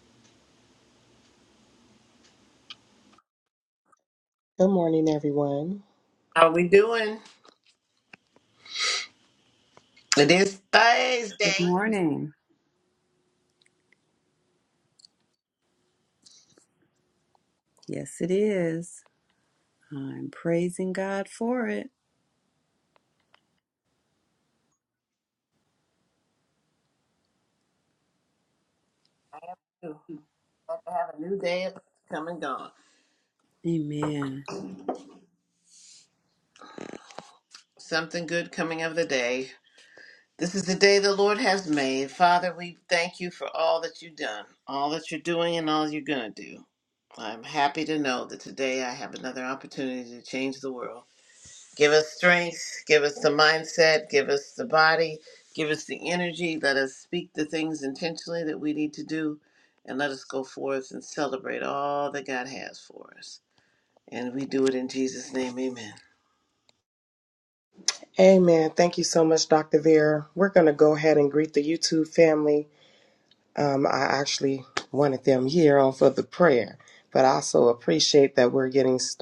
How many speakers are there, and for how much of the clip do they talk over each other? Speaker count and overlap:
3, under 1%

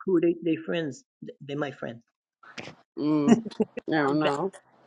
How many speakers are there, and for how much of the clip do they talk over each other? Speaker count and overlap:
2, about 6%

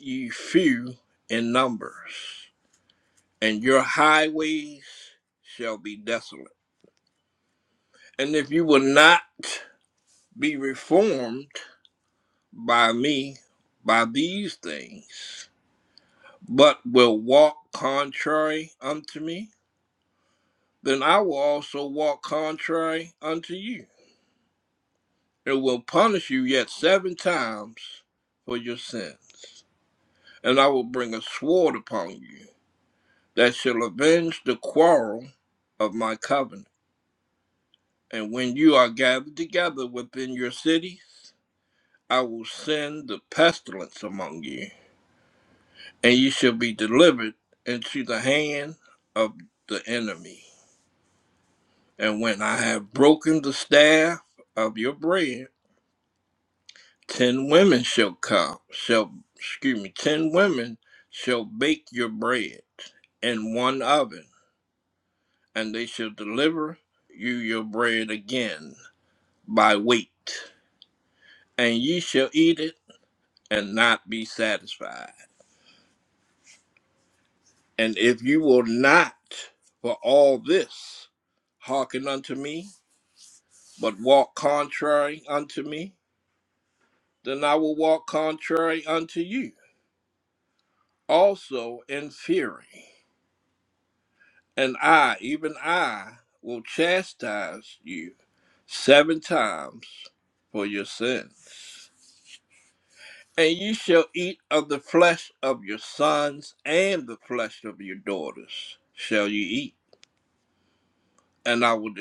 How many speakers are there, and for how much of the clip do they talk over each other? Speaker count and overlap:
1, no overlap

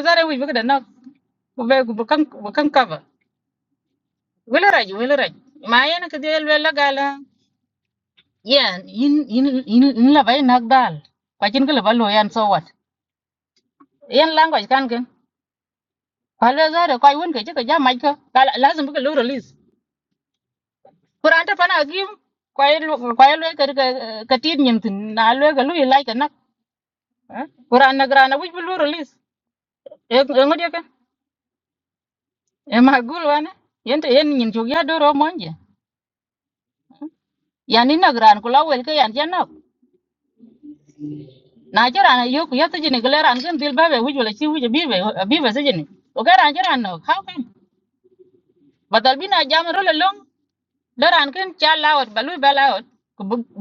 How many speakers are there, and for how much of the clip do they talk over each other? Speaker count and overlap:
1, no overlap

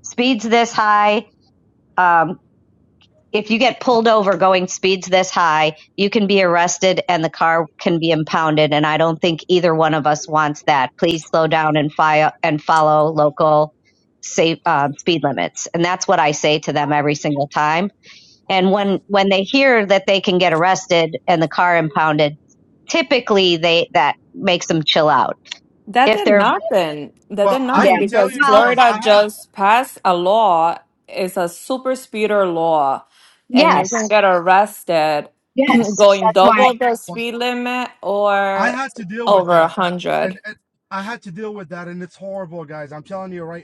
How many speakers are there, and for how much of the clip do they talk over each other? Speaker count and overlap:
3, about 10%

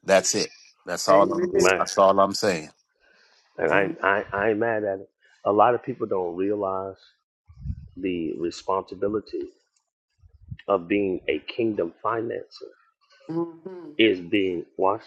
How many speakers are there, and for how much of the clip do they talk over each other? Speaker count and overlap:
3, about 7%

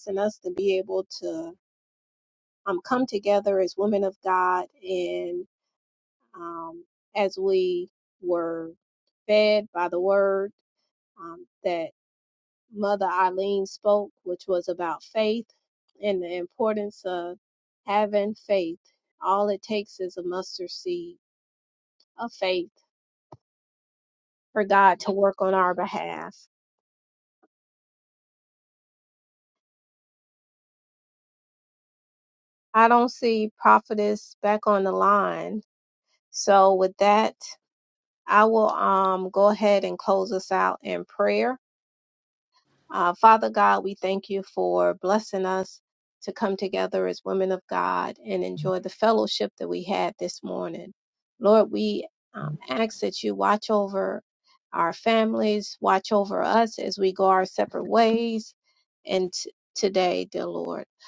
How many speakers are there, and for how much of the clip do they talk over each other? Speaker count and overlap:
1, no overlap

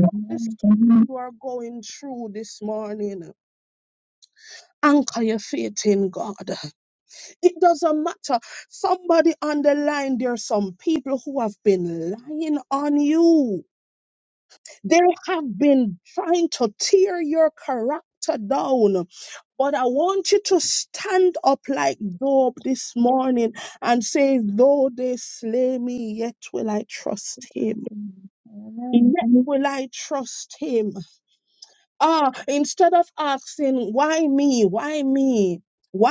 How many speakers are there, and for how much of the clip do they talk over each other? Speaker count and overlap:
2, about 2%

